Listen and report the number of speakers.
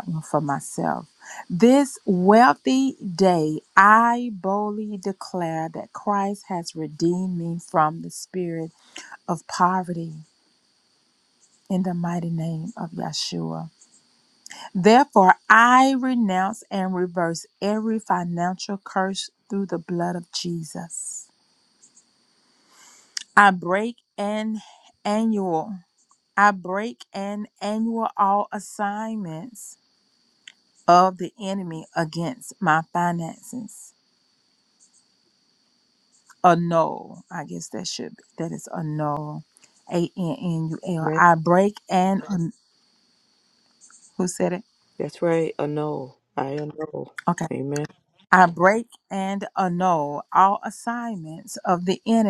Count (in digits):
2